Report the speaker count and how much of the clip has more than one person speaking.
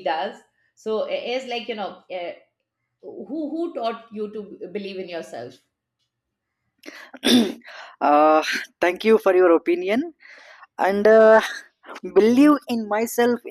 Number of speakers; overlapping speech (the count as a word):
two, no overlap